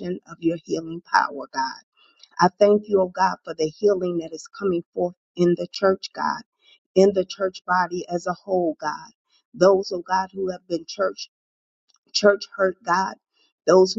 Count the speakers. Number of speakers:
1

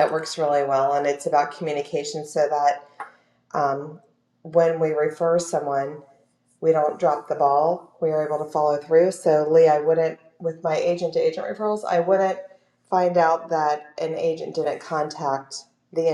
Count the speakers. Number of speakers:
1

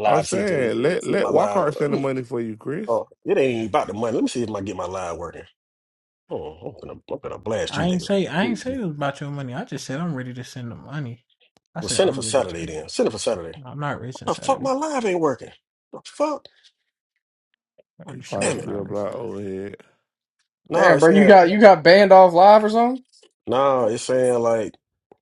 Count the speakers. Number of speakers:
4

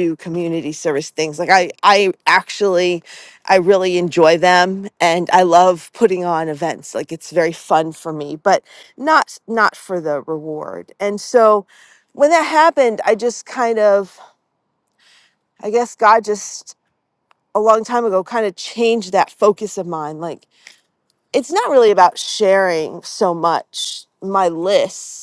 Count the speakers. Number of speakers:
1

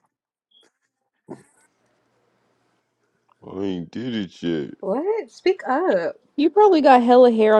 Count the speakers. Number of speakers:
3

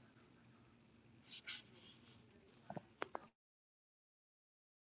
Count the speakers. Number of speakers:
0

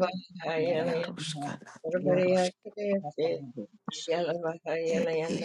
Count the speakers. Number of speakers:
3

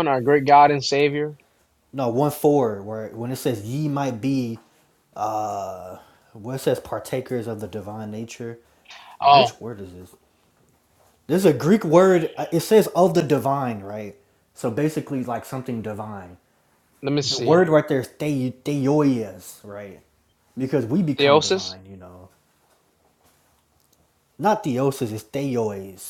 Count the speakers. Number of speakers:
2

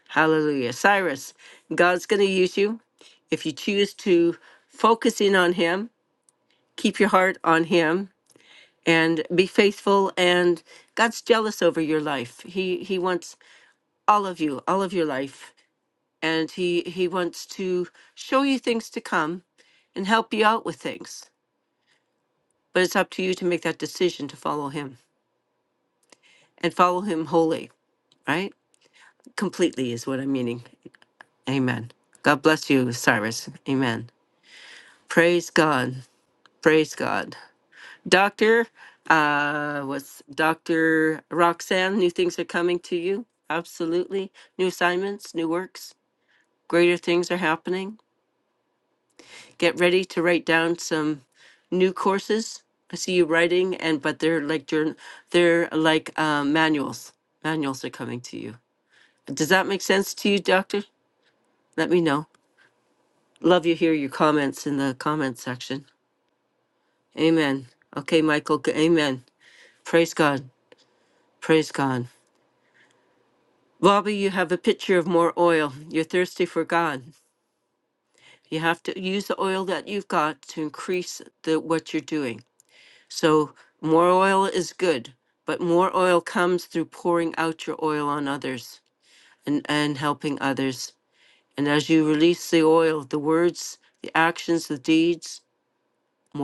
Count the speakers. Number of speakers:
1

